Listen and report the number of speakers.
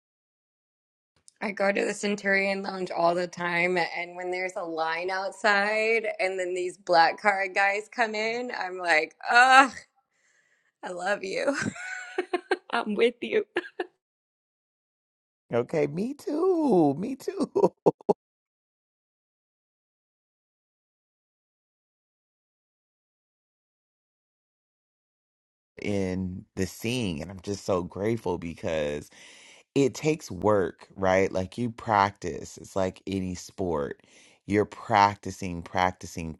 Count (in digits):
2